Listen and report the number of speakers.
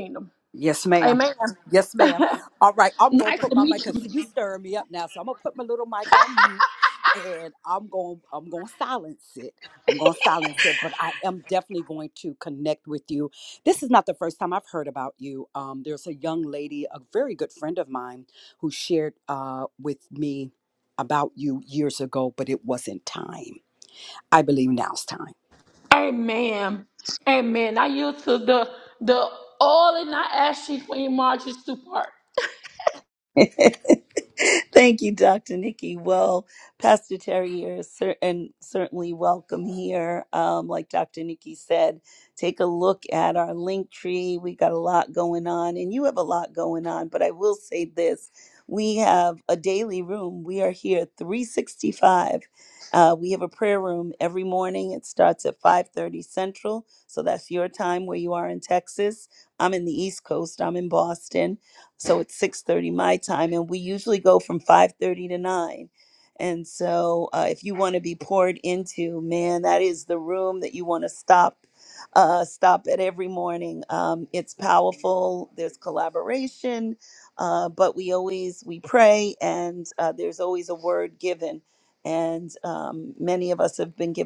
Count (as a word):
three